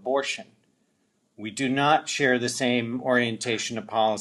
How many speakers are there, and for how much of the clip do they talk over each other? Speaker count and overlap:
1, no overlap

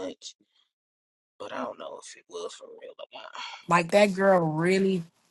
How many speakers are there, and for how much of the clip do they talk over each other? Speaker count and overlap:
2, no overlap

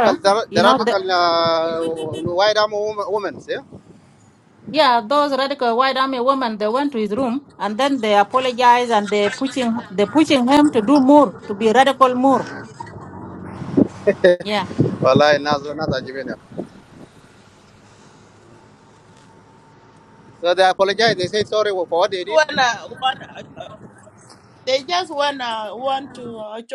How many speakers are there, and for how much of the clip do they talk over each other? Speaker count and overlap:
3, about 3%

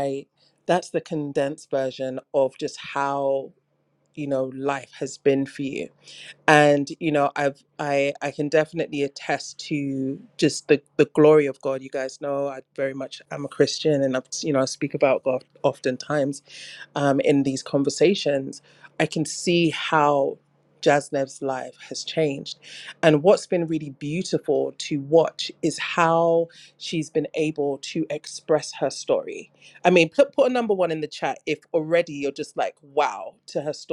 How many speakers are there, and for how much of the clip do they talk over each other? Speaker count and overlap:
1, no overlap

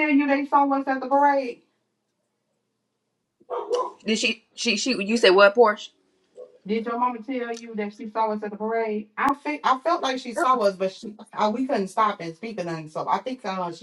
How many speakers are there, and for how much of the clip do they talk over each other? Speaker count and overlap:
2, no overlap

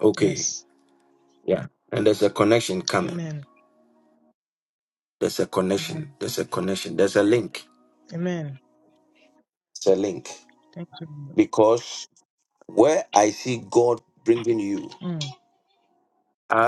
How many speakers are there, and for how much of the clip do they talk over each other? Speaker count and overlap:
2, about 4%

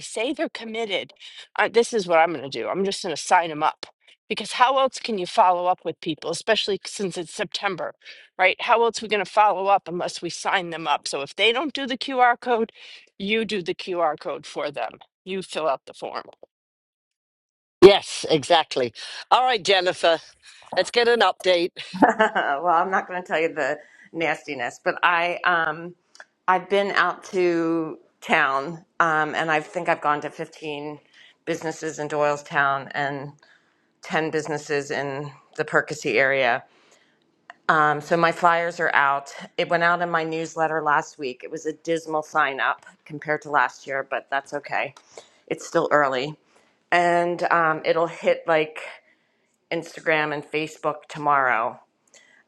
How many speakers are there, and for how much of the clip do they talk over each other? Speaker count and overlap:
3, no overlap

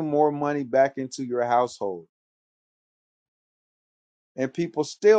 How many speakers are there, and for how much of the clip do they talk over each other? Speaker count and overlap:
1, no overlap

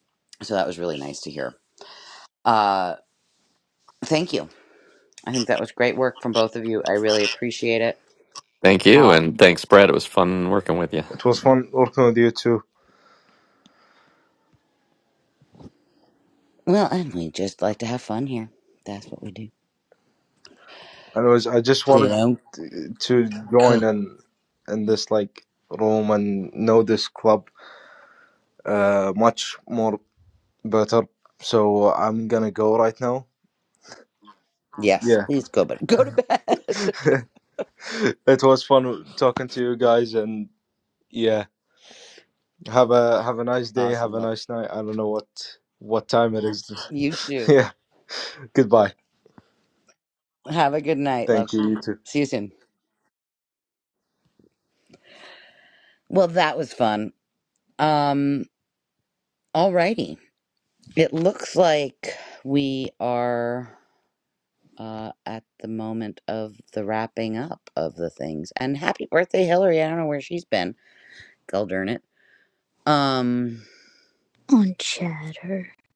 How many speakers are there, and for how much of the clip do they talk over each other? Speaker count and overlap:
4, about 2%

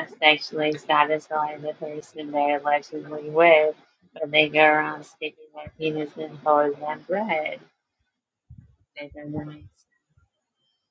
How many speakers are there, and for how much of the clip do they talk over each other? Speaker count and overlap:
1, no overlap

